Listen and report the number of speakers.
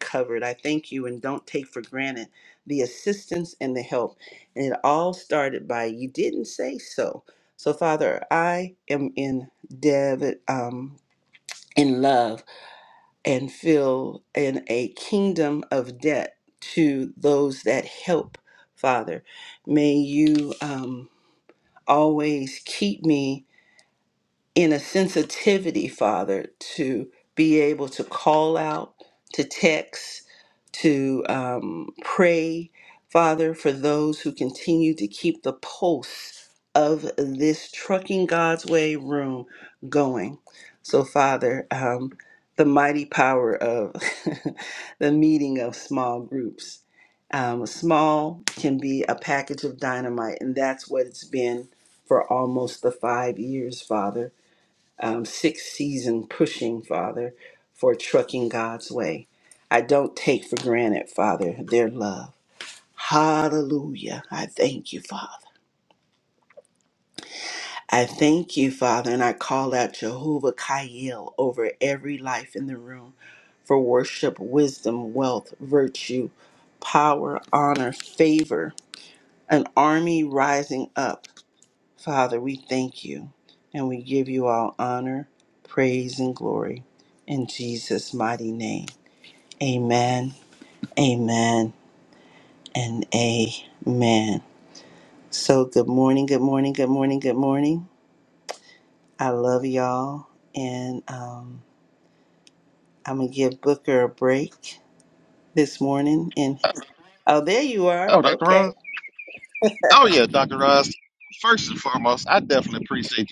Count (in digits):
2